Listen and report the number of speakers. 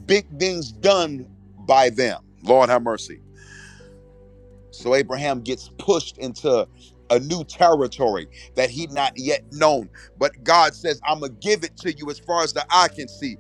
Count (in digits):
1